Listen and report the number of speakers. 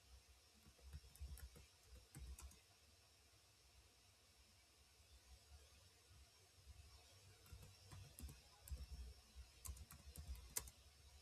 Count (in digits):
0